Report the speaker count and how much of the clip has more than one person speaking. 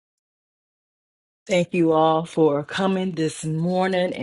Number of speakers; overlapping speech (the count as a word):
one, no overlap